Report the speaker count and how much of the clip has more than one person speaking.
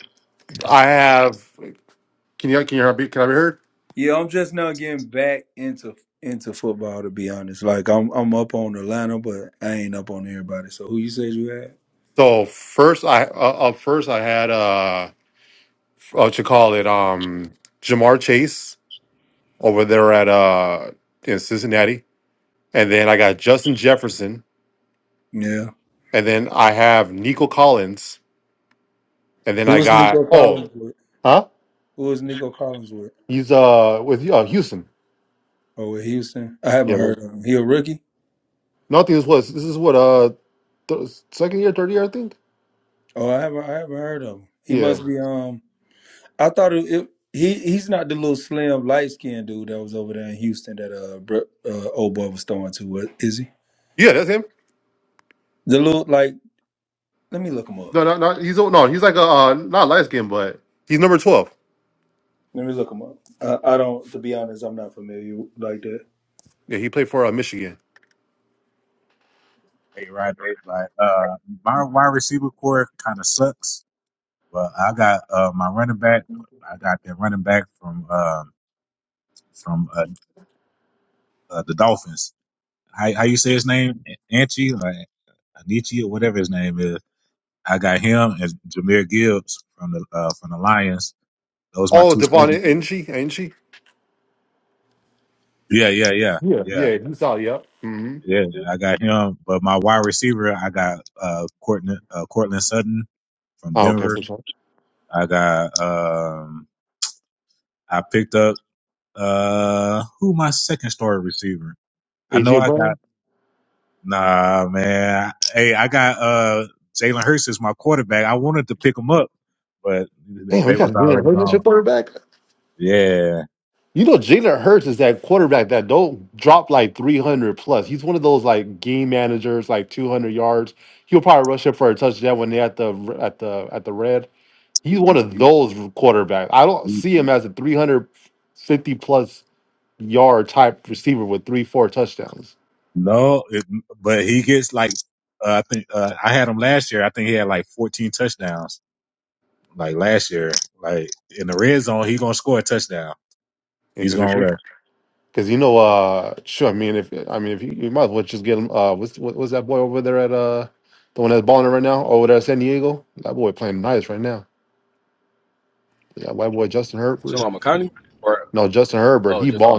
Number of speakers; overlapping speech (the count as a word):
four, about 3%